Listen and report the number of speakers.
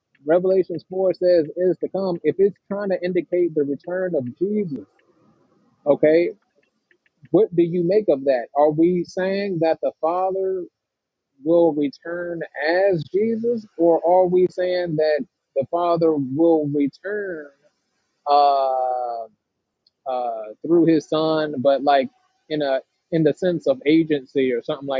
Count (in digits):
1